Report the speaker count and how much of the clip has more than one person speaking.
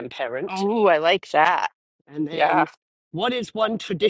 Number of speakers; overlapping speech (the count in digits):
2, about 14%